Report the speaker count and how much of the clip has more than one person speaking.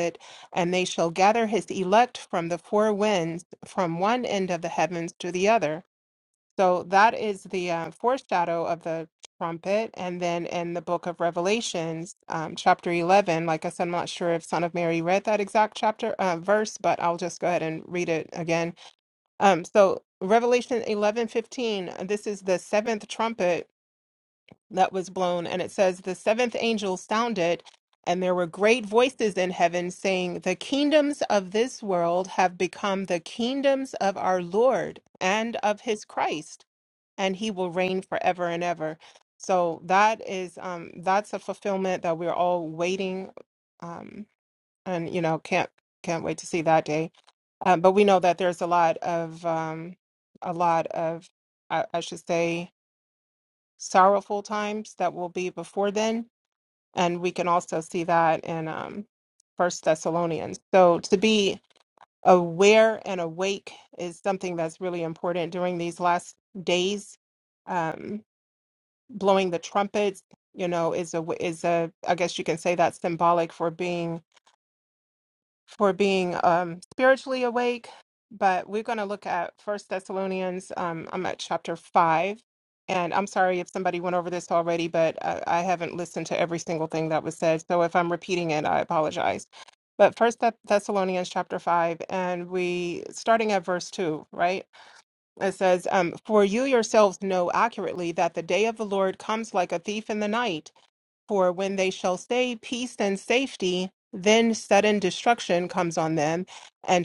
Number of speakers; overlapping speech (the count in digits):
1, no overlap